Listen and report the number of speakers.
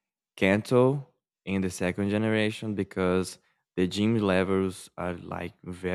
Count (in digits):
1